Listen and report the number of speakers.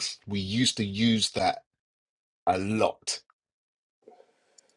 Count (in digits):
1